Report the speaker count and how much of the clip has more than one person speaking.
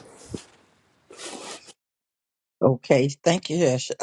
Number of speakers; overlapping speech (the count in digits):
1, no overlap